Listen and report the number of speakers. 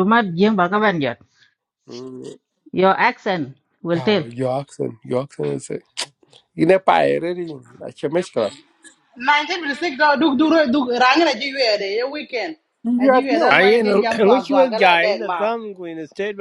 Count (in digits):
4